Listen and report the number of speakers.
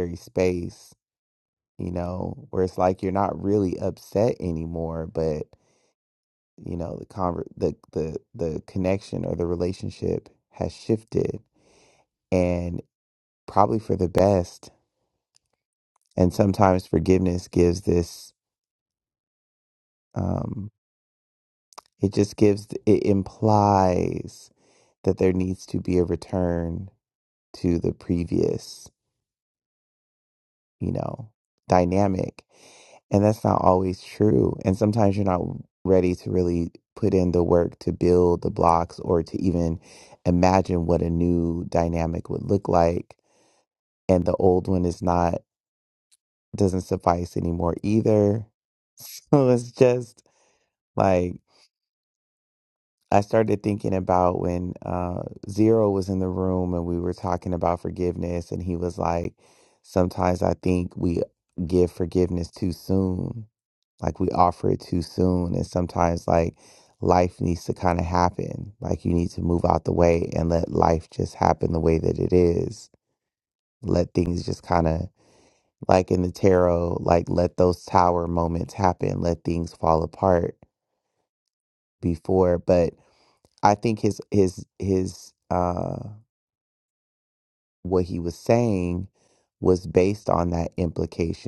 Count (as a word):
one